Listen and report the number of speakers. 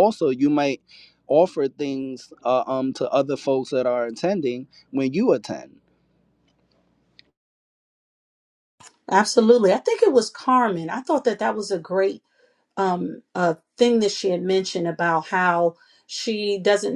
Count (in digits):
2